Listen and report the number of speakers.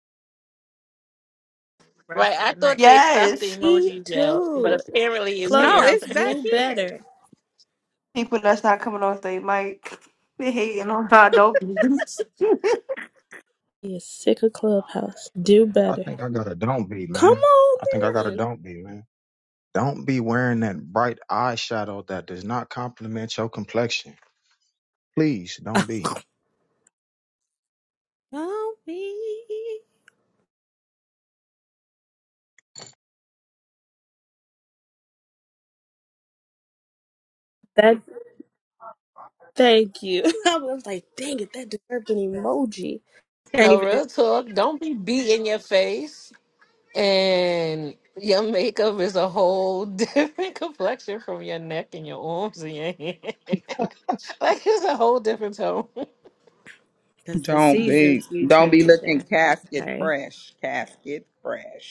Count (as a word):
six